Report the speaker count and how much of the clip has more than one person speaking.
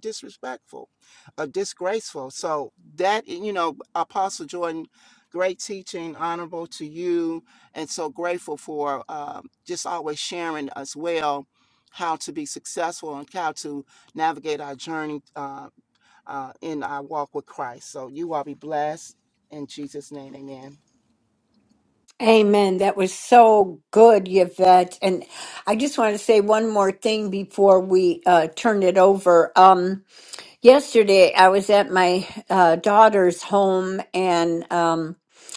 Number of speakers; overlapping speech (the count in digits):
2, no overlap